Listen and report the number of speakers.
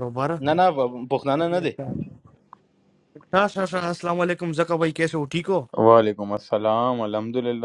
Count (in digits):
3